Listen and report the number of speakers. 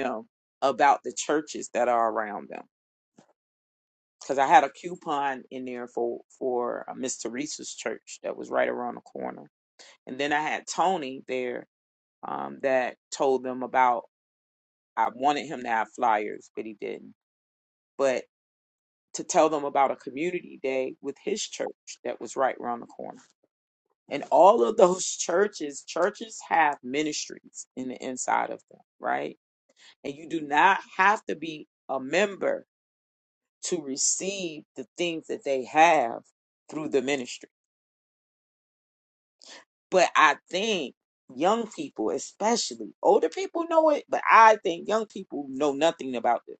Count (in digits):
1